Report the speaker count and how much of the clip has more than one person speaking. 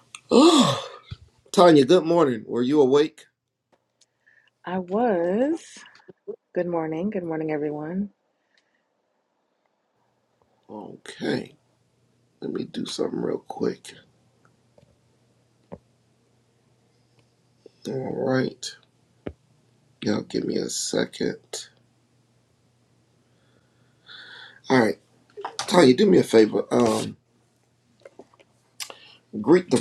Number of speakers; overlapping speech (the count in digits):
2, no overlap